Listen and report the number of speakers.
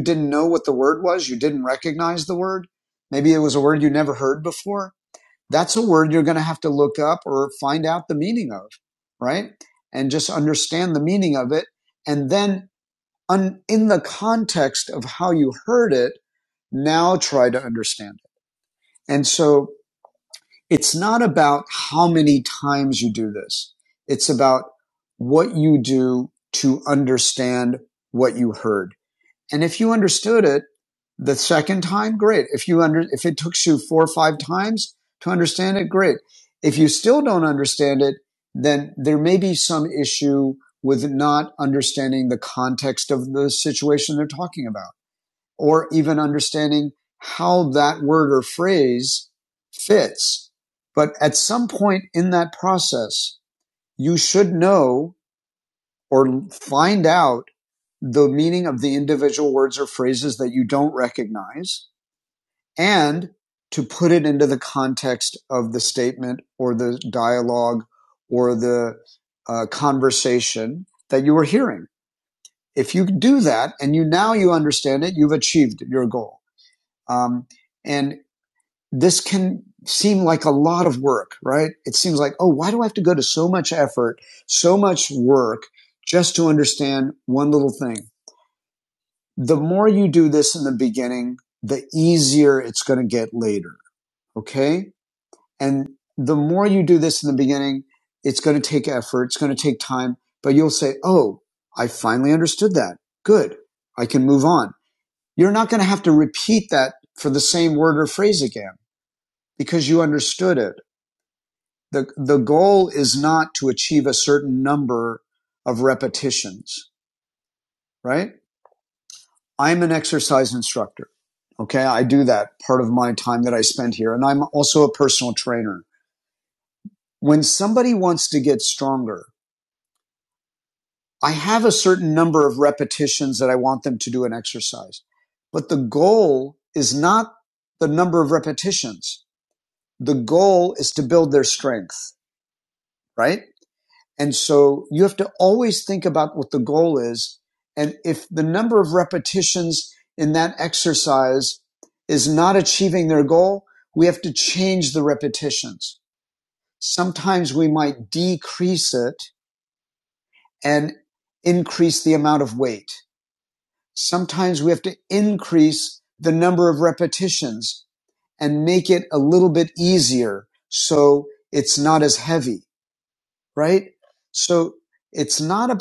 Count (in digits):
1